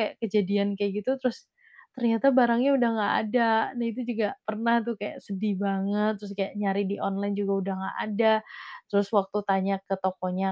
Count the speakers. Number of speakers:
one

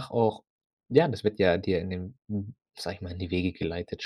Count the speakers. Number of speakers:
one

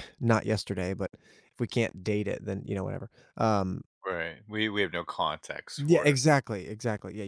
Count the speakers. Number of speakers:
two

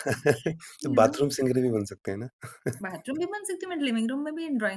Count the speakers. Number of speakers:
two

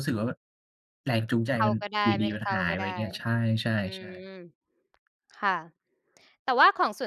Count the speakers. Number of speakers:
two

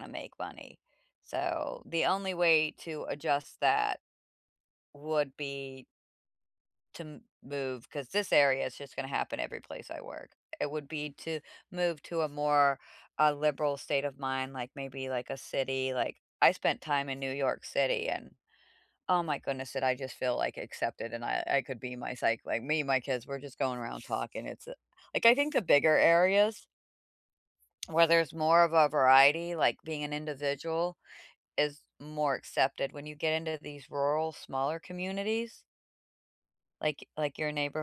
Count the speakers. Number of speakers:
one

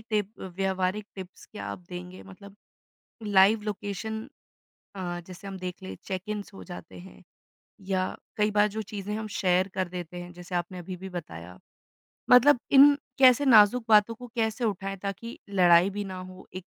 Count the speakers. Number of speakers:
one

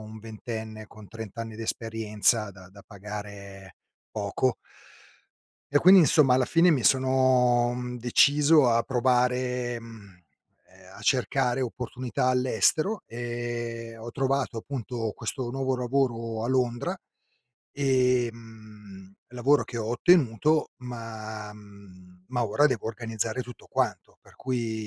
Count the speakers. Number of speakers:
one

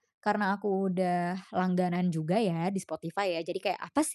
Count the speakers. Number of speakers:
one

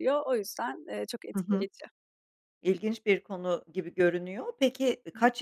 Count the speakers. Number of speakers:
two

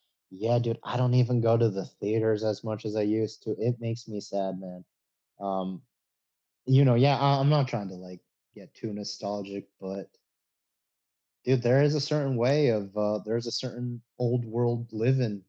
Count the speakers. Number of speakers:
one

